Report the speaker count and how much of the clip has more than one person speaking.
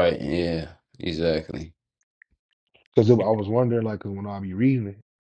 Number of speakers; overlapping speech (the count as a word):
two, no overlap